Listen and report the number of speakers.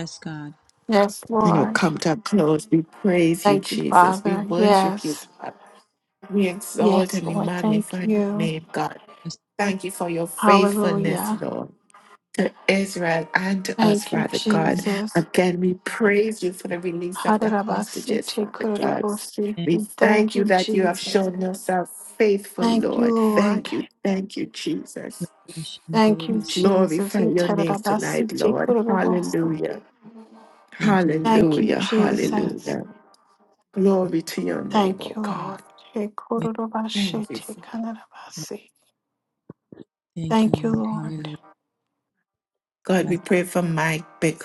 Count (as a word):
three